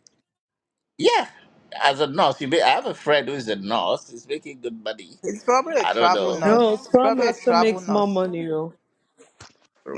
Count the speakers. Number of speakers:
three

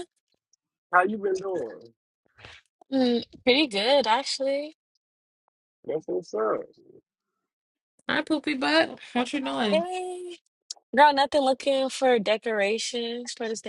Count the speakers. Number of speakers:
three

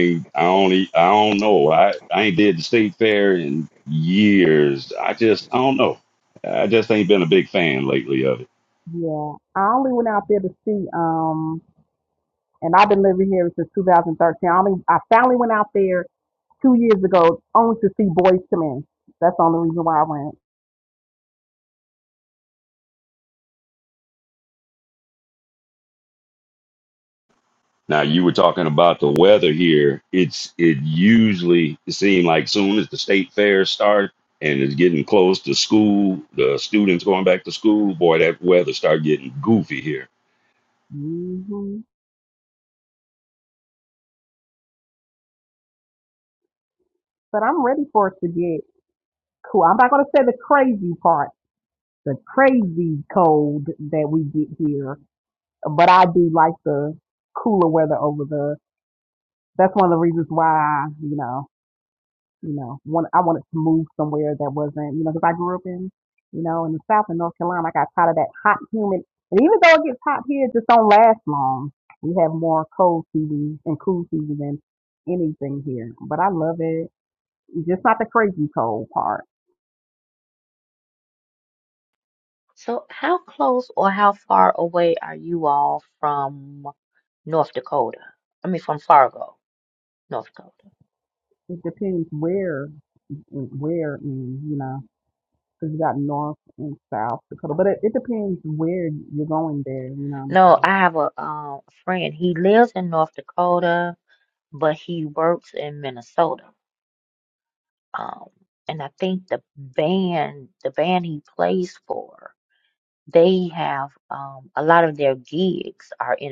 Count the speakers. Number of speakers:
three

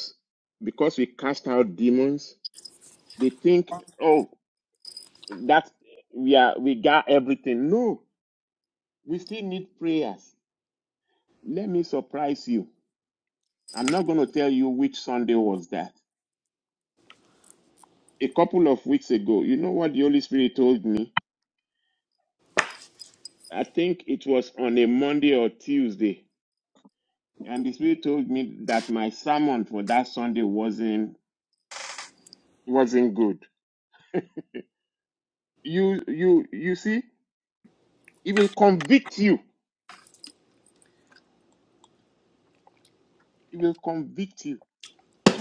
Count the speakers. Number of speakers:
one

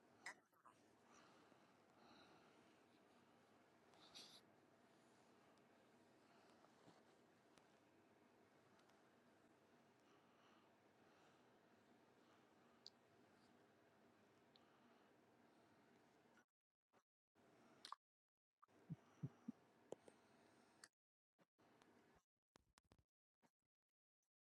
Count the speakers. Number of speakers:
zero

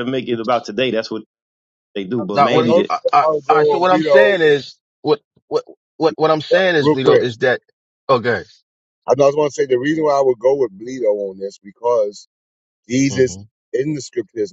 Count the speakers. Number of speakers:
three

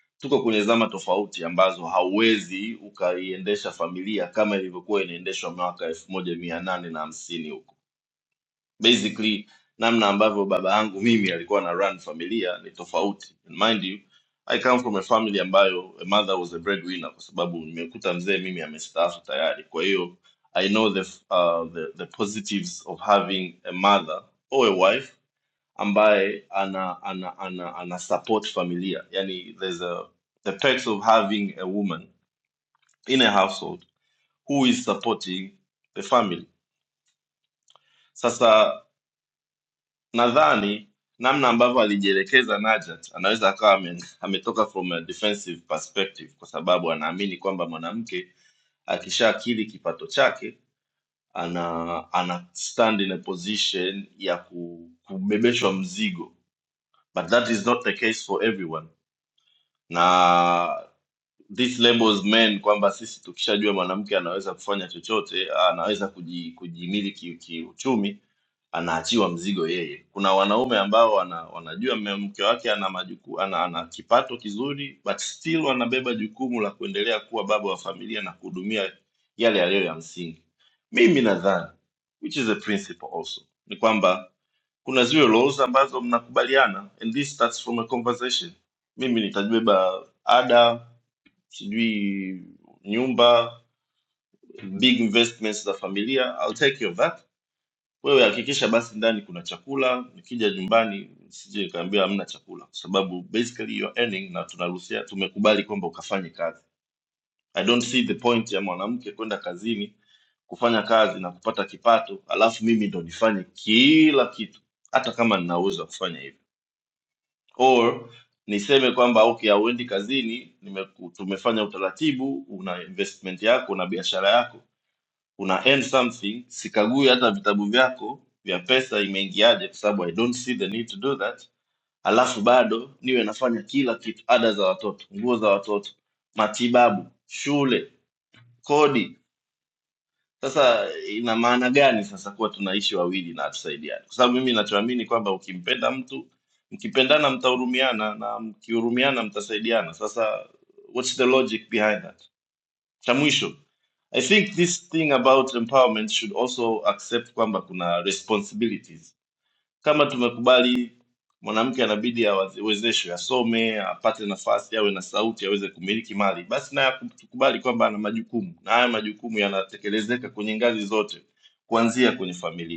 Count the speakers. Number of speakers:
one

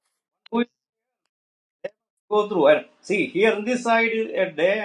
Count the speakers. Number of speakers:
one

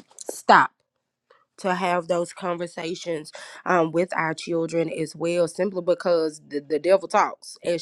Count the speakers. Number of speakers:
one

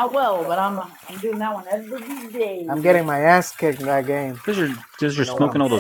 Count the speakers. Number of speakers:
three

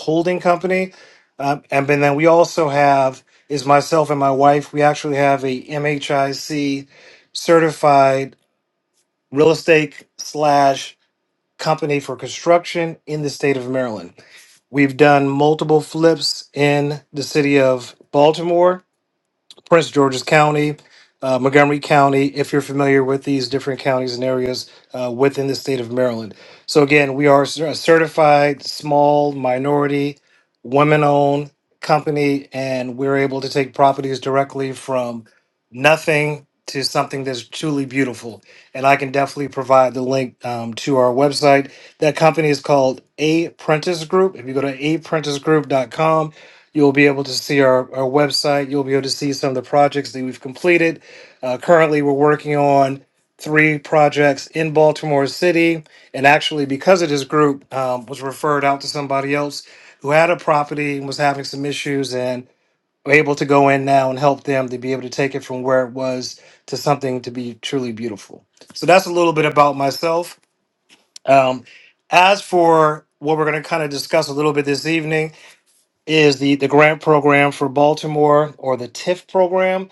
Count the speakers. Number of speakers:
one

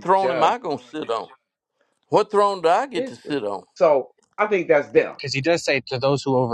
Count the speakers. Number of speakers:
three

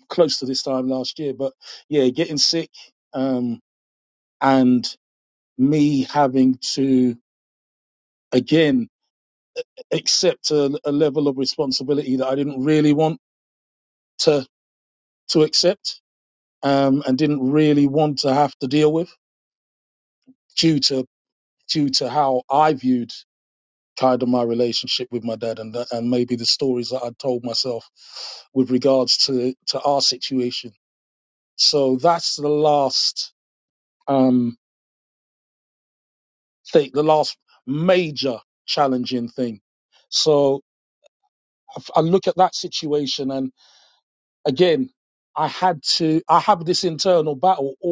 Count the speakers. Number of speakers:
one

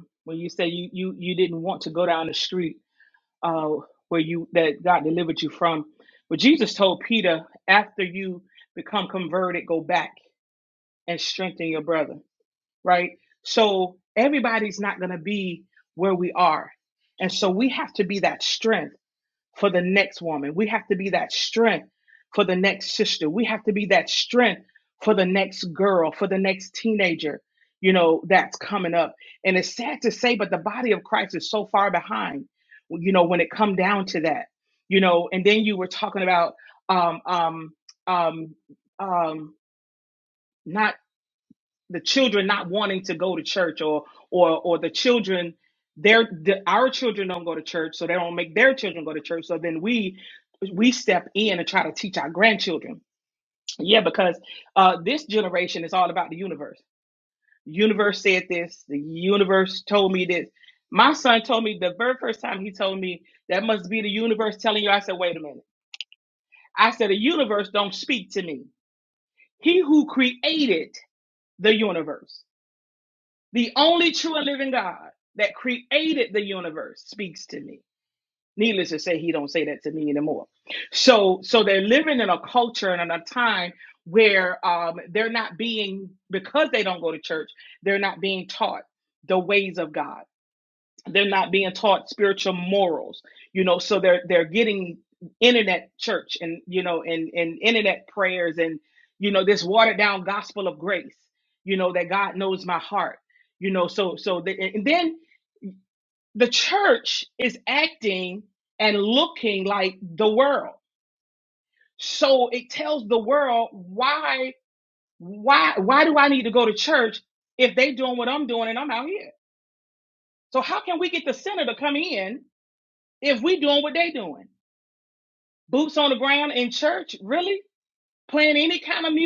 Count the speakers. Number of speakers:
one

